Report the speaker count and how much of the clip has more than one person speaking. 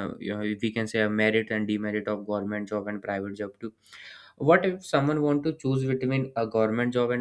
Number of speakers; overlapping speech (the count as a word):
one, no overlap